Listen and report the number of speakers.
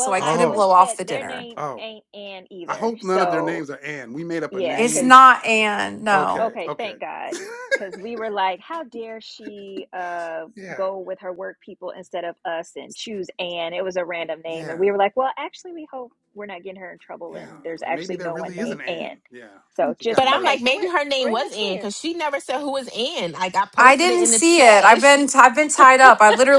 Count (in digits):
4